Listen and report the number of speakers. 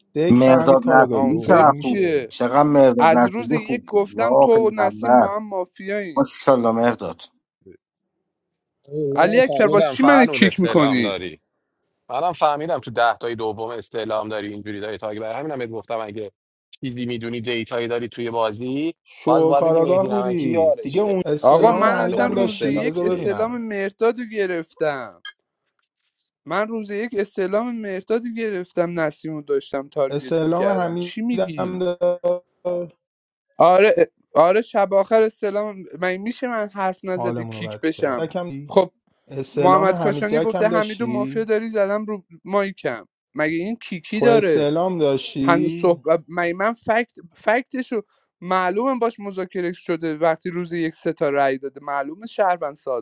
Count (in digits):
4